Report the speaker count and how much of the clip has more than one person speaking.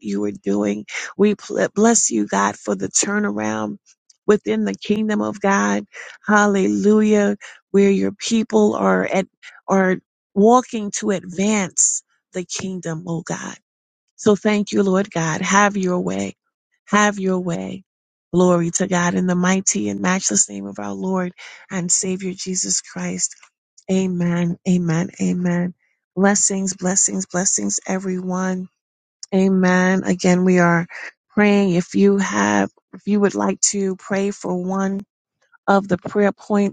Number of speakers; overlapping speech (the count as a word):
one, no overlap